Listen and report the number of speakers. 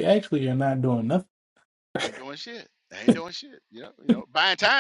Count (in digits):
2